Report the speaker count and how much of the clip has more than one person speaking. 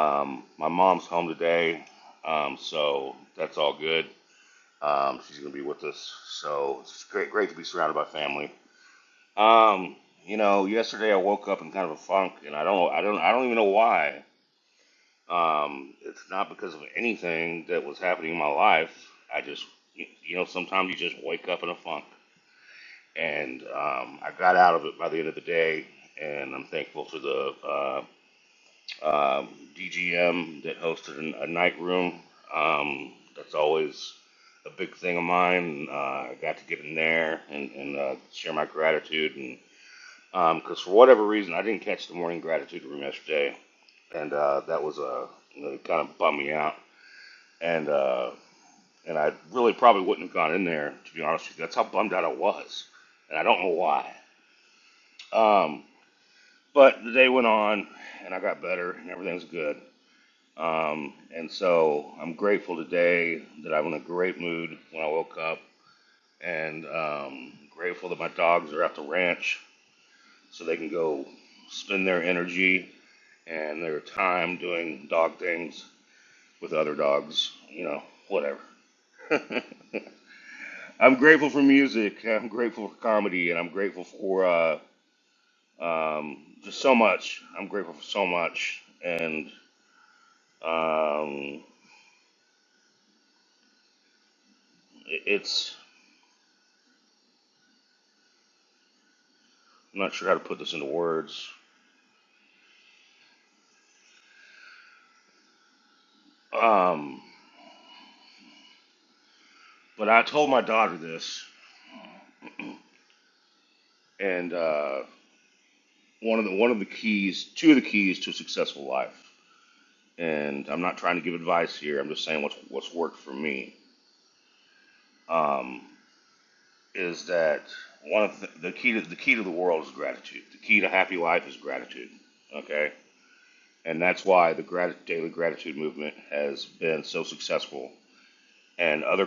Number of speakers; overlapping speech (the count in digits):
1, no overlap